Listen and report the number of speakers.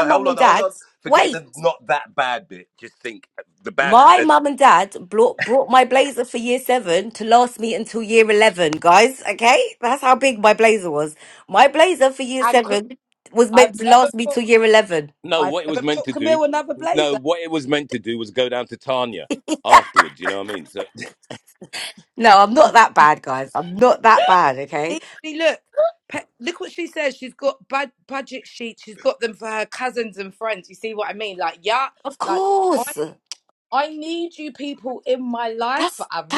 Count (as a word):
three